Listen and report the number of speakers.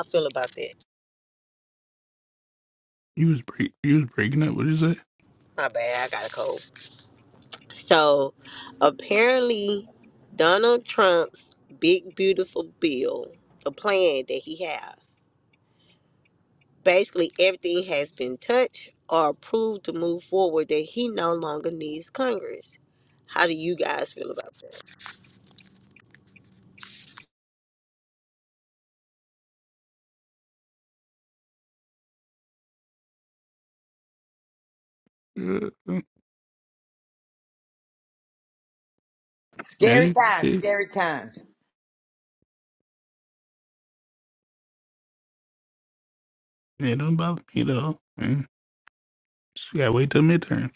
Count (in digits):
3